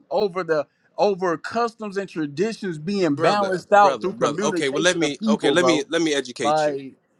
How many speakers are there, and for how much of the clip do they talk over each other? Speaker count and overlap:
2, about 42%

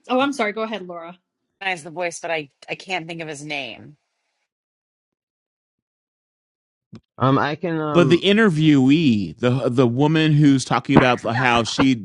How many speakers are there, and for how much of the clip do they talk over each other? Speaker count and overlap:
4, about 3%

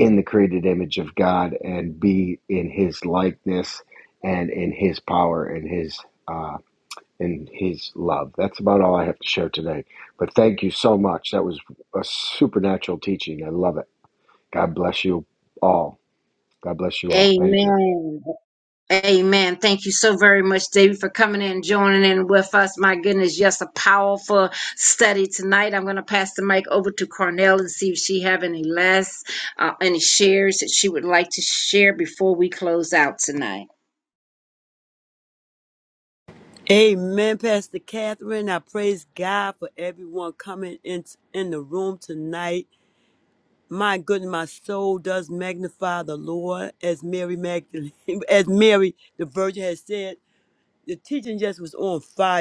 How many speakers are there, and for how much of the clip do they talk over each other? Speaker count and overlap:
3, about 1%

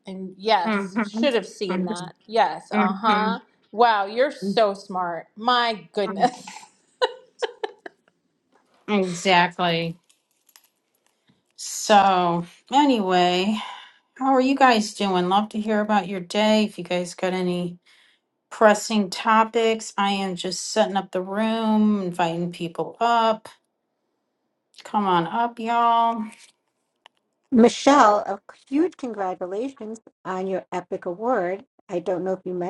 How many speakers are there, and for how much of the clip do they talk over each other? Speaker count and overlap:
3, about 4%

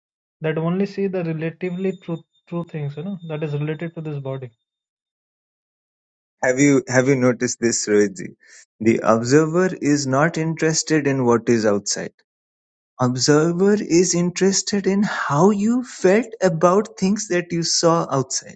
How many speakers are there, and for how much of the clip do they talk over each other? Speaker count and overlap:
2, no overlap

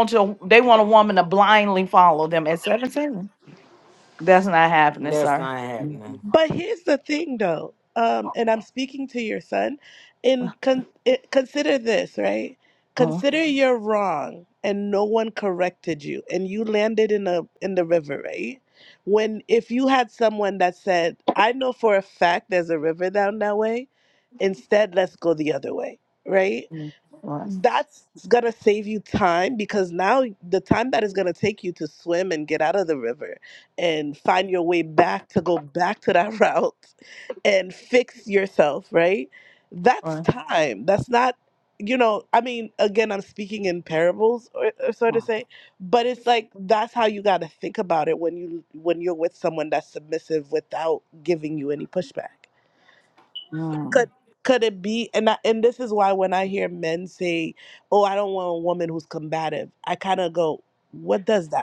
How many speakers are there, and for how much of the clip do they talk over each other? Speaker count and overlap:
3, about 1%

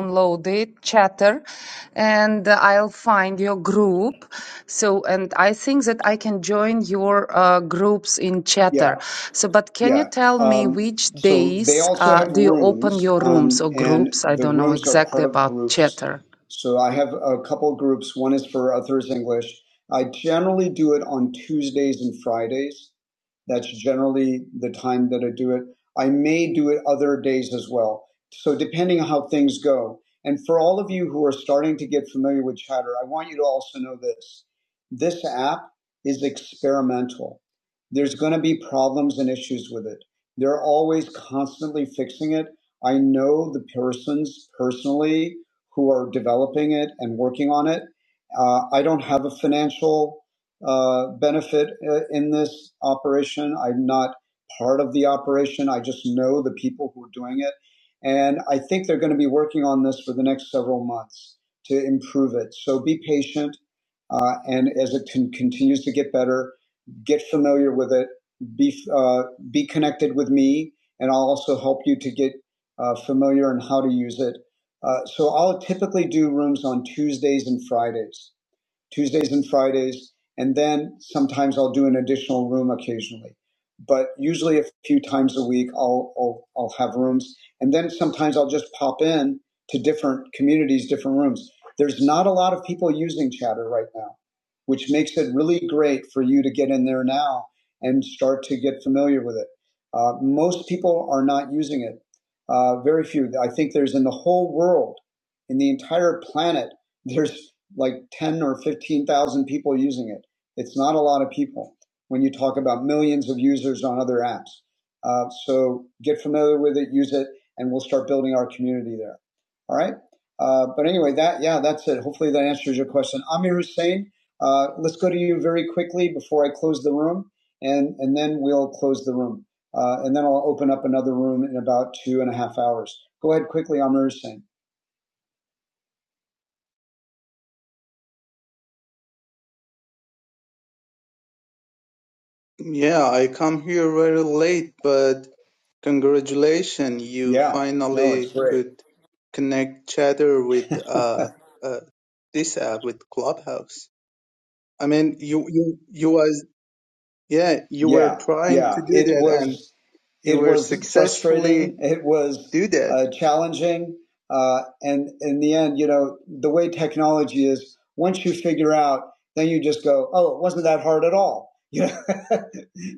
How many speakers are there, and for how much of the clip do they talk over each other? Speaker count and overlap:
3, about 6%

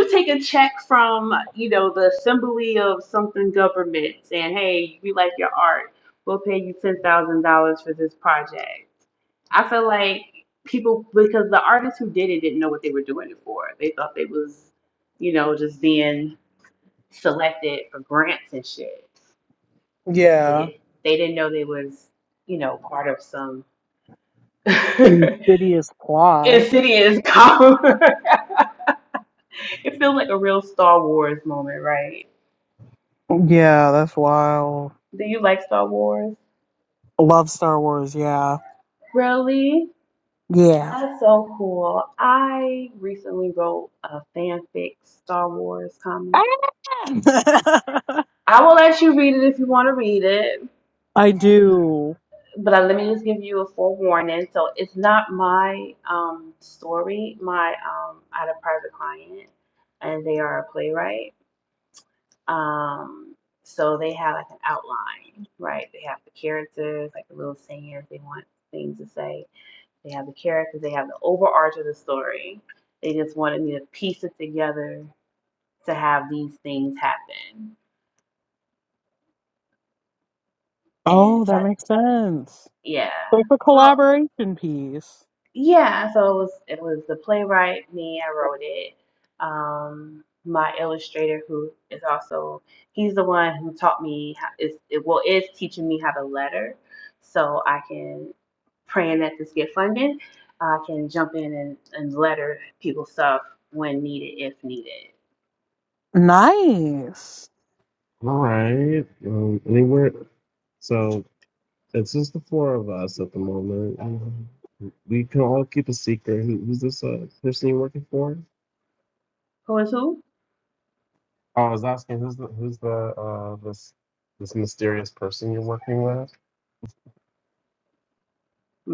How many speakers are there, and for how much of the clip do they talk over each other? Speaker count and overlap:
3, about 1%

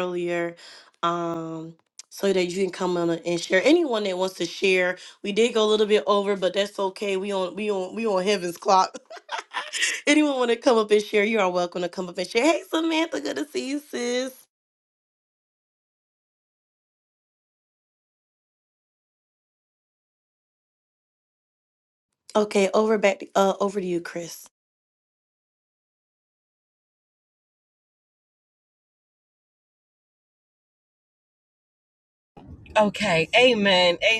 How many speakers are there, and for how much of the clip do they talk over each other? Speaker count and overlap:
2, no overlap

